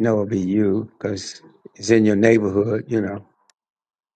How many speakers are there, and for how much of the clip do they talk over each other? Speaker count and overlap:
one, no overlap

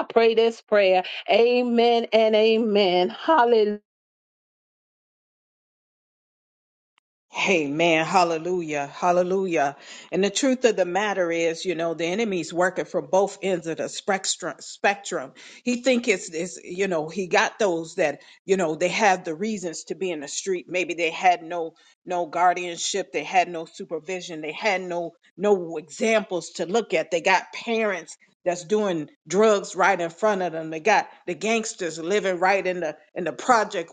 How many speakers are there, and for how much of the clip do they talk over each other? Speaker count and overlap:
two, no overlap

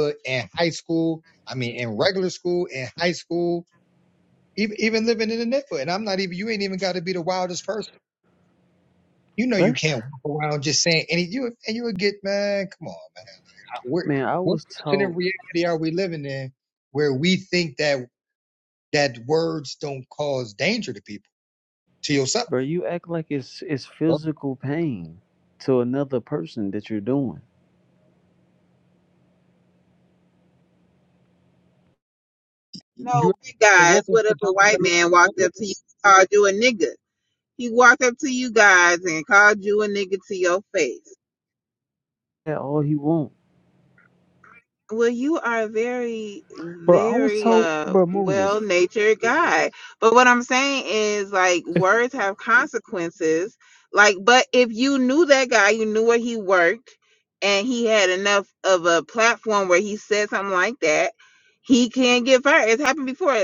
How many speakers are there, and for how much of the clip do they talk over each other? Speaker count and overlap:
three, about 7%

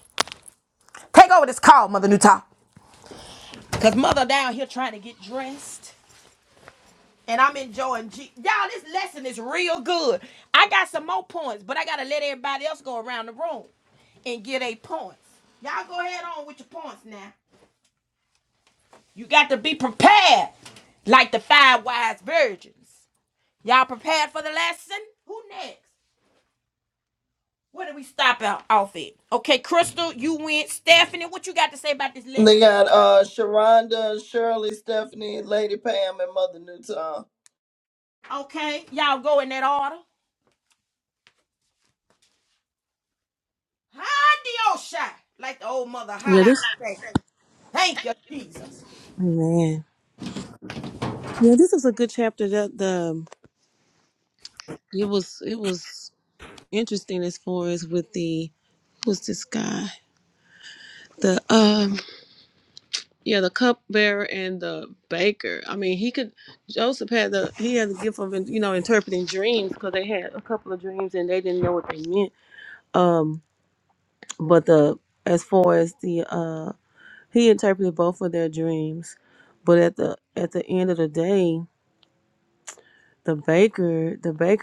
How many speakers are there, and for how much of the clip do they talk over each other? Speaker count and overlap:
three, about 1%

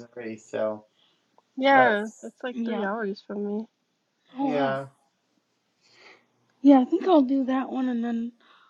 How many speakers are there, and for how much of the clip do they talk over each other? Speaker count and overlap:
three, about 11%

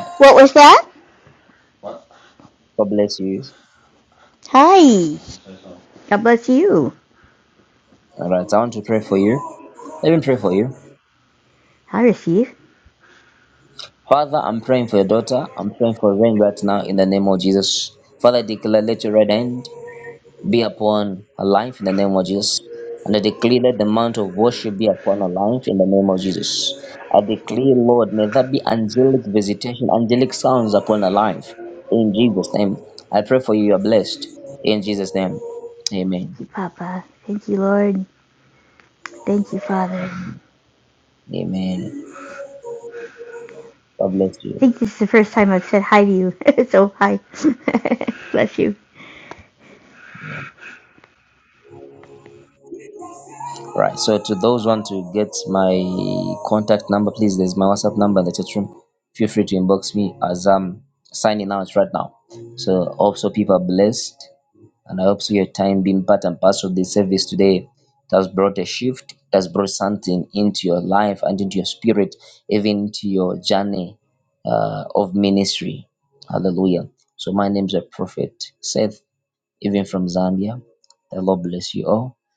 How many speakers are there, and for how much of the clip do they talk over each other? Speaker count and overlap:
two, under 1%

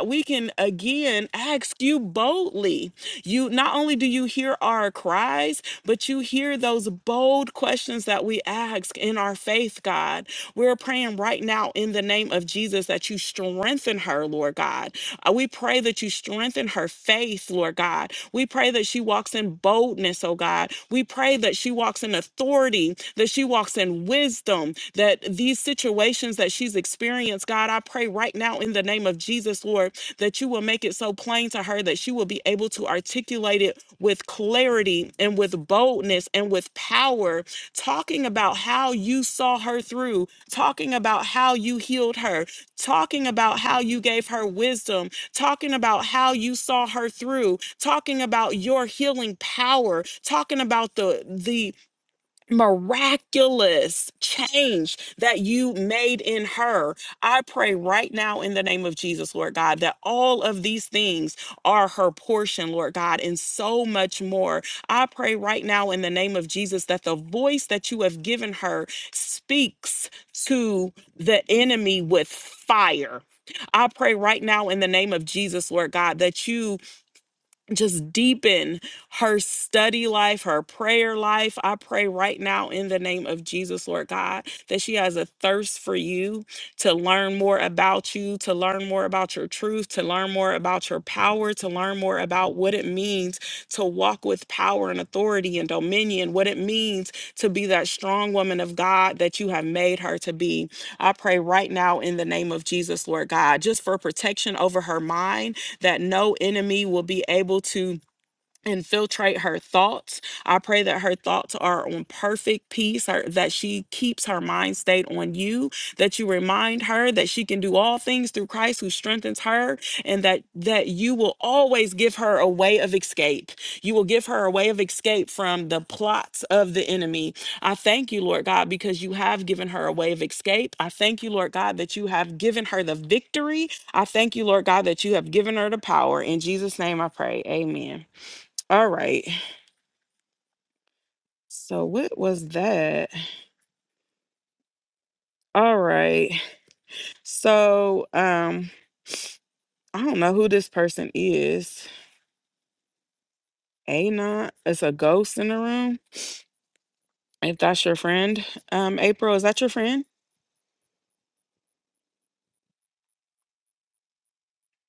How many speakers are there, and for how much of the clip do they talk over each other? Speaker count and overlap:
one, no overlap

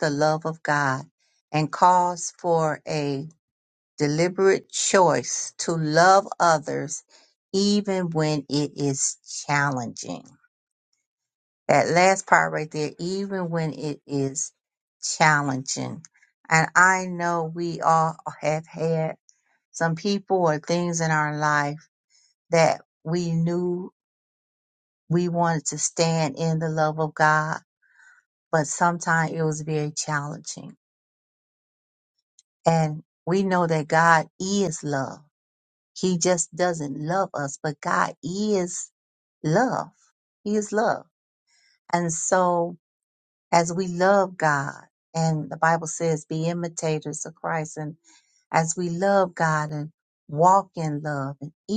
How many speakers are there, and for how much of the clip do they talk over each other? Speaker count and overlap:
one, no overlap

